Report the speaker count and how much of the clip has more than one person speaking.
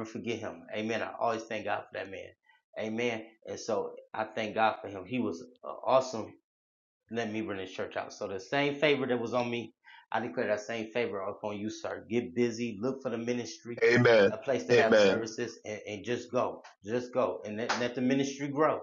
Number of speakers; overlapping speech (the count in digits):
2, about 3%